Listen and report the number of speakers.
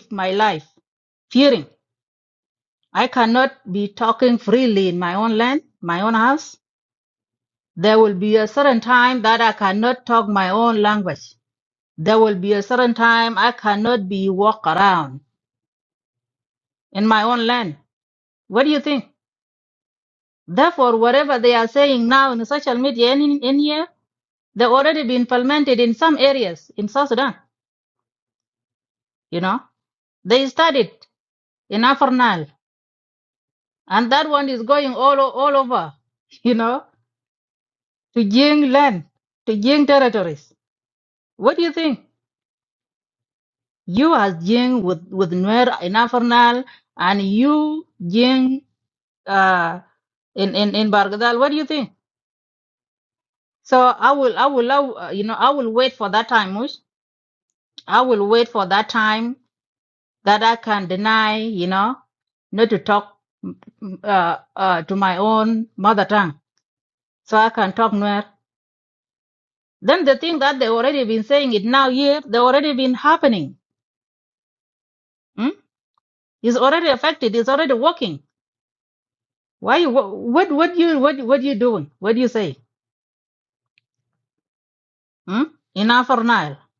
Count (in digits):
1